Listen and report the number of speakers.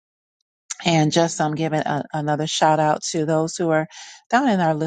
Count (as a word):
one